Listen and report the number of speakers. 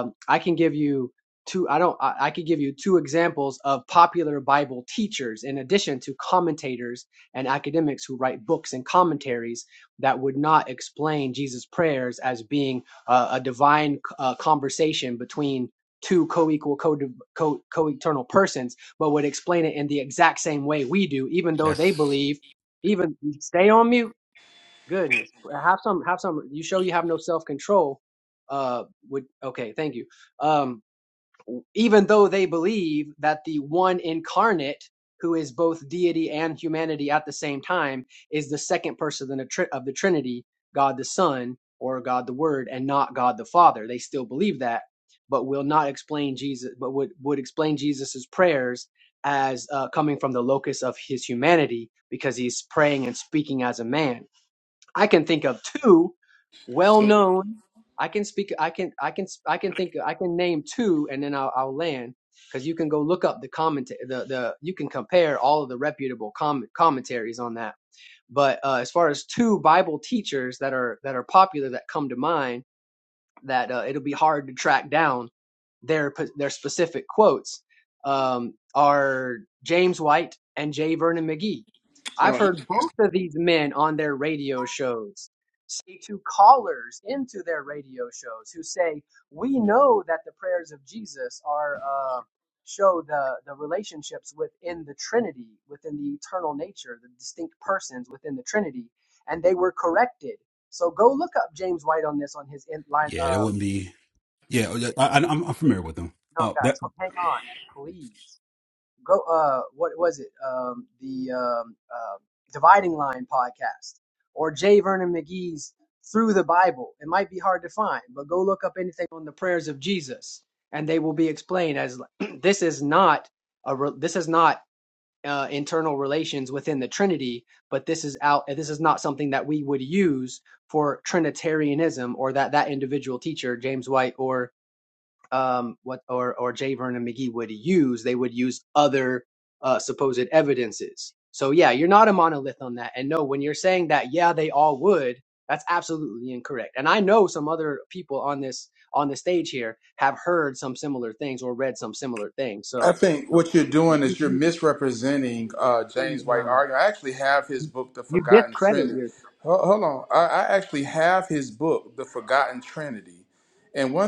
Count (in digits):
3